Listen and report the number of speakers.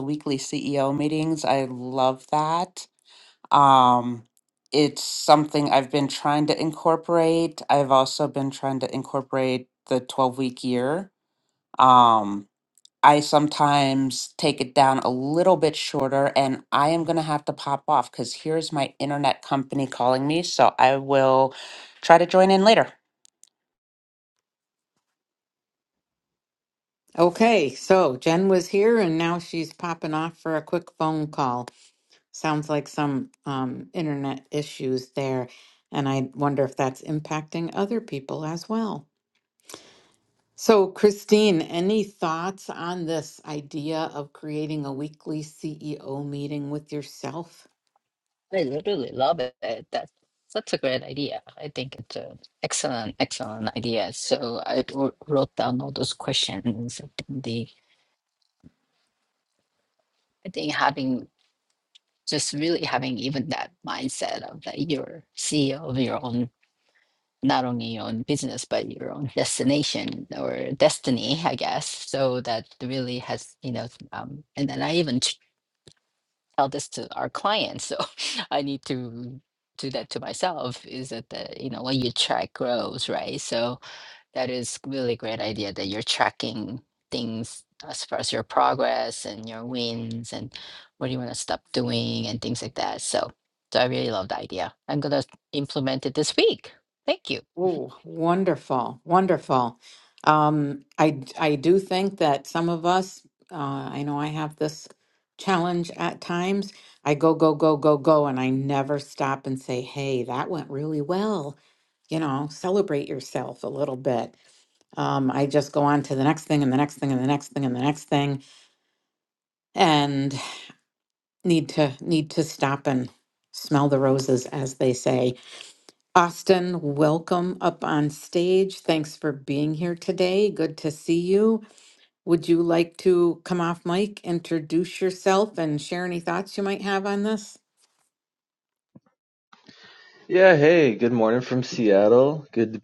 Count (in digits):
4